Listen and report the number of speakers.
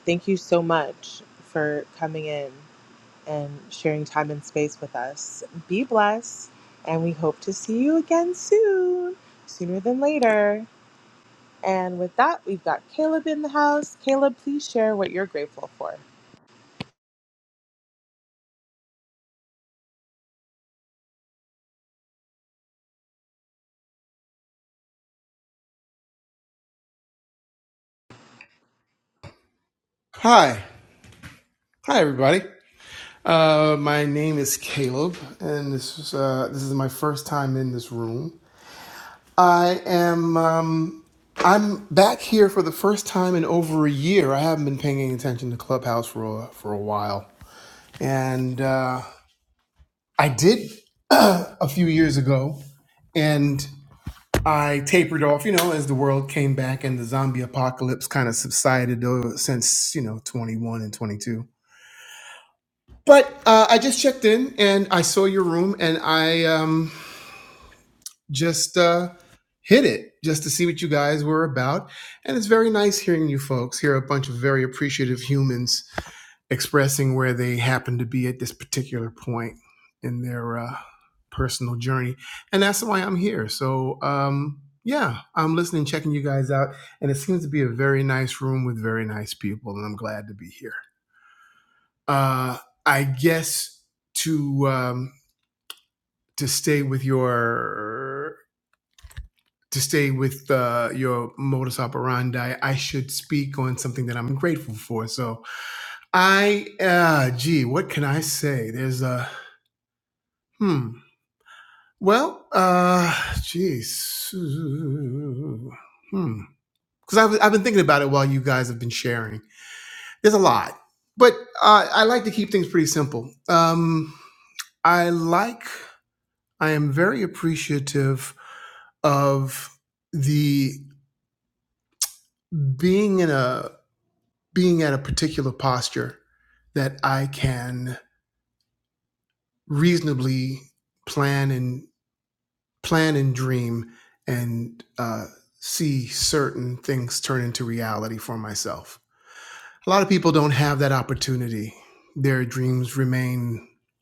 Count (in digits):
2